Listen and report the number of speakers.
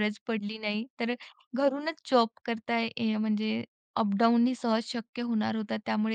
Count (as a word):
one